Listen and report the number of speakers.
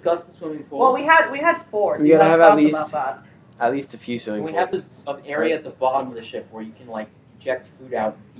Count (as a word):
three